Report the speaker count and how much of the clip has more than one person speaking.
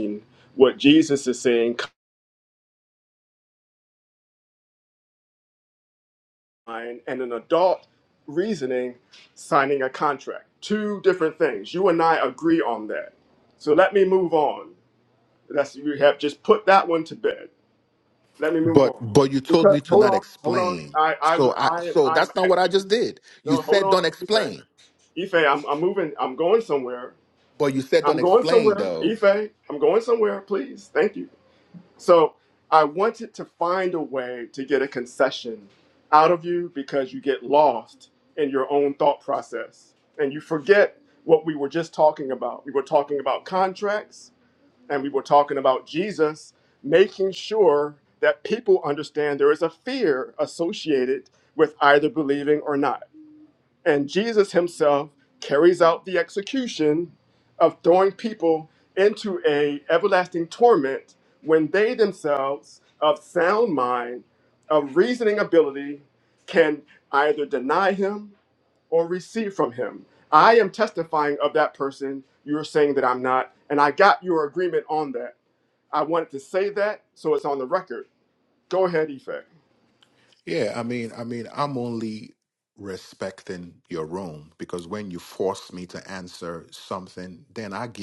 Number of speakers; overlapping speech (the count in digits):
2, about 6%